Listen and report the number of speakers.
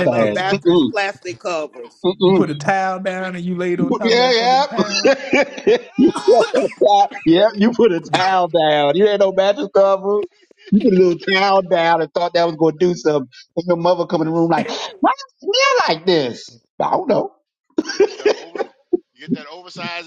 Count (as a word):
four